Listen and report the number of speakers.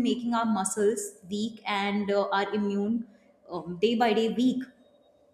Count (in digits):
1